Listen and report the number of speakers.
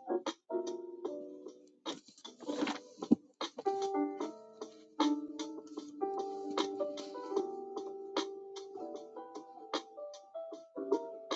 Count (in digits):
0